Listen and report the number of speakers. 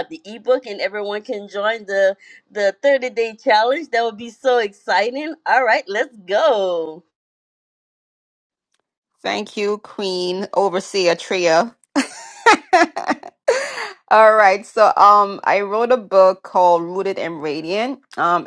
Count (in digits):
2